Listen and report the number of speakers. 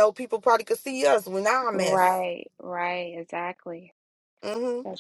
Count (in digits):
2